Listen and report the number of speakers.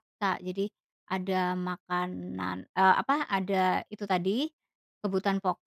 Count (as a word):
one